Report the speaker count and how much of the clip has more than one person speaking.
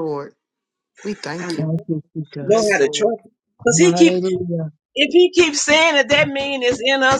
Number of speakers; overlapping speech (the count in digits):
3, about 19%